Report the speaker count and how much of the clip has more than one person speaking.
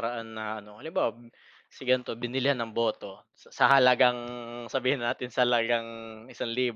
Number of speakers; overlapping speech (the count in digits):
1, no overlap